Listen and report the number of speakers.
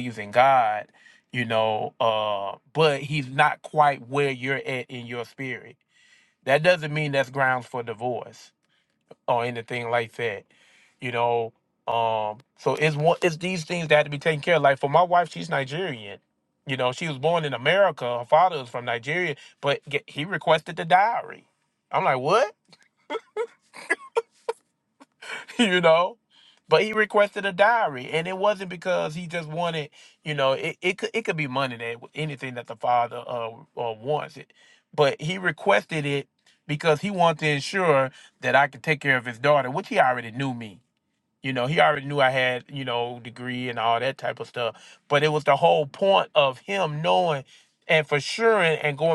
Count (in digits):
1